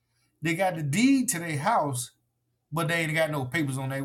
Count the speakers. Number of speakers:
one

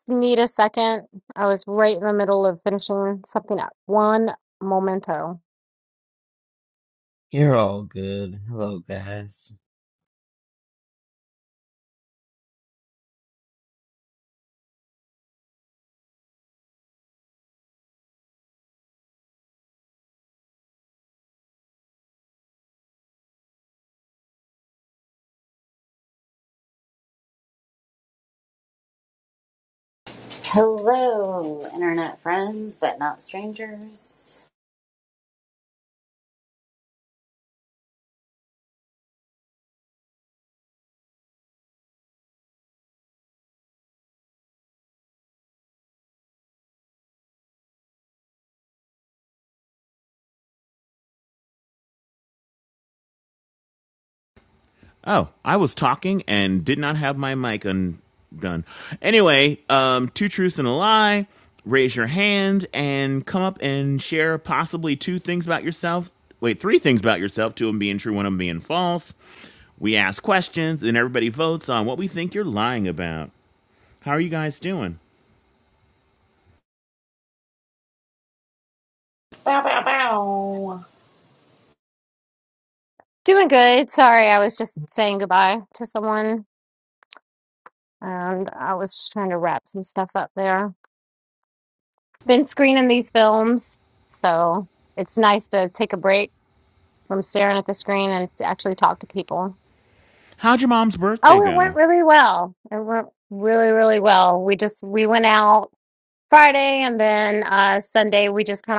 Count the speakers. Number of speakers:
four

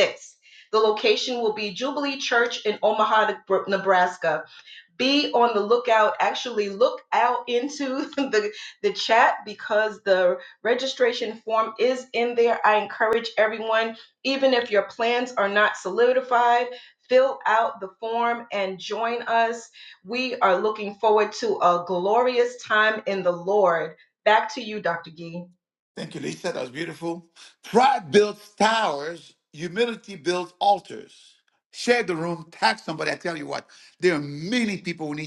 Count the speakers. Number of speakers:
two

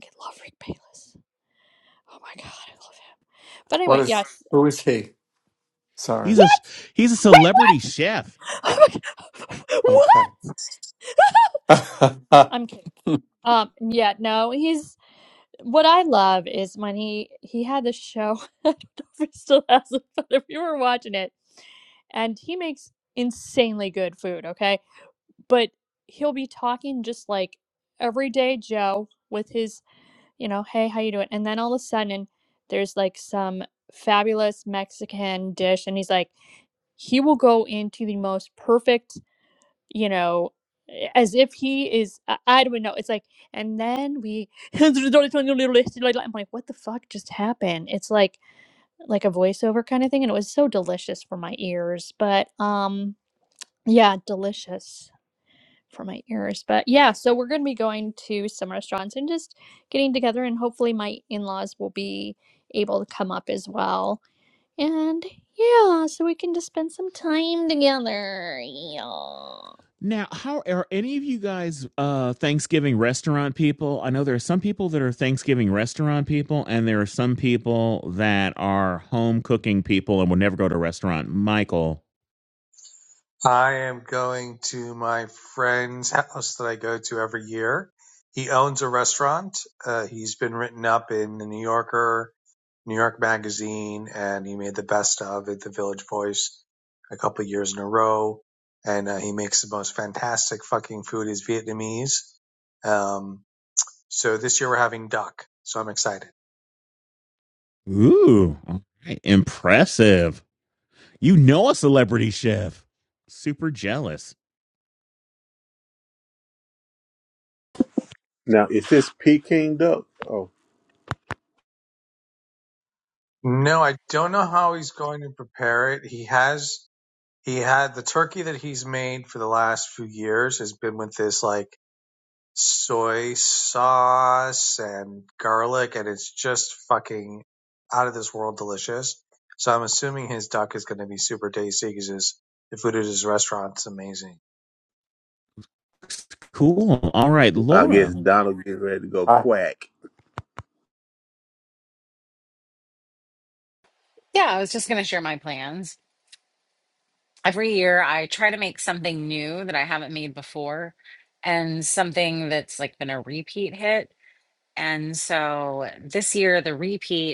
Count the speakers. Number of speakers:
six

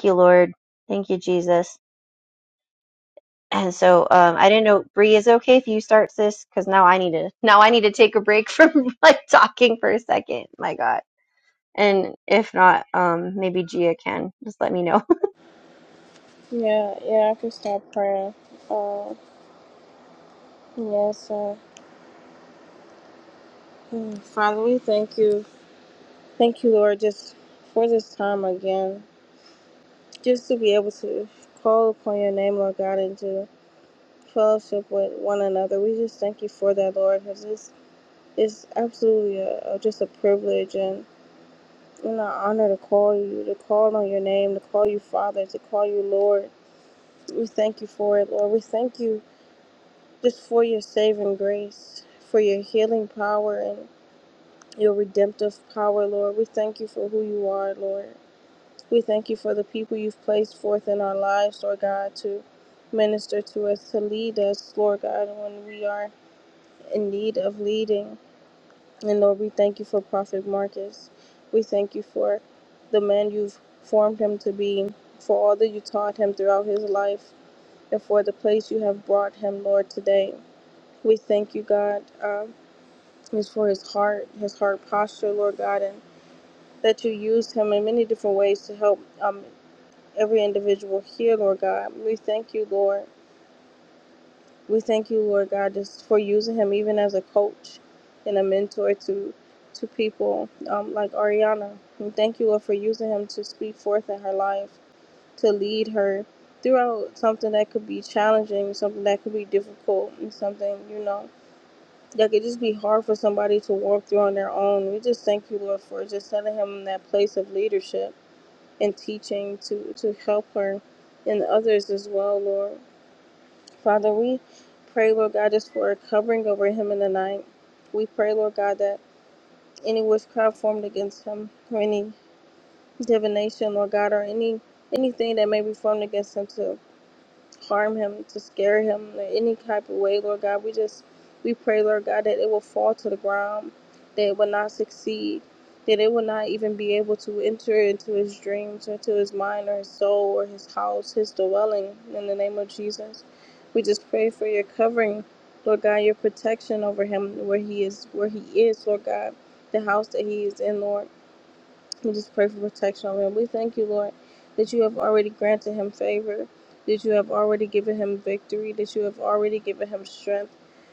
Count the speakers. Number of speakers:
two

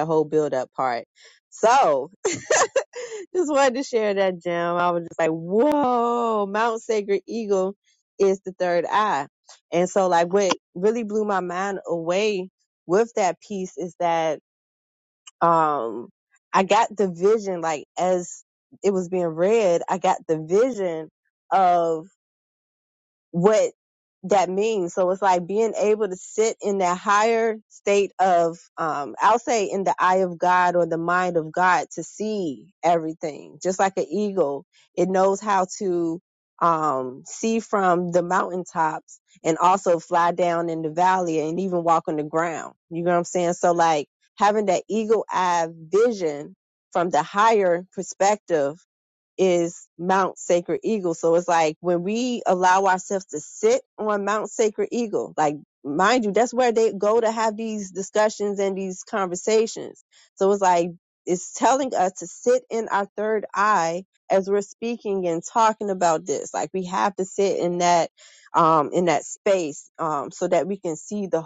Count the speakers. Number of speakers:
one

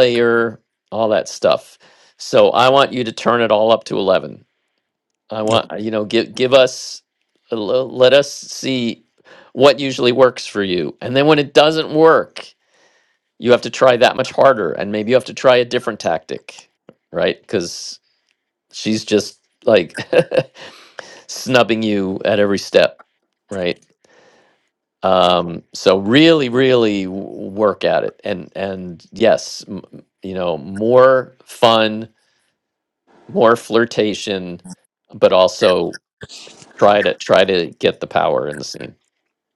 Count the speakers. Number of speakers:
one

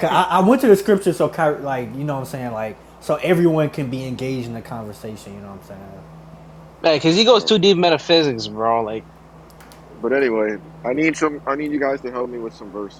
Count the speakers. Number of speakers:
three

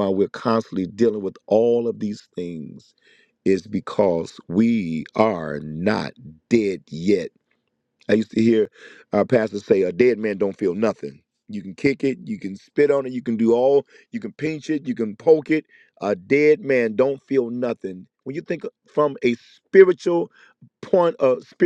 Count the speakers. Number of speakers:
one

